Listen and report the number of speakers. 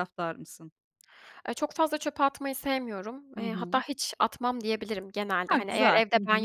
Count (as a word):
two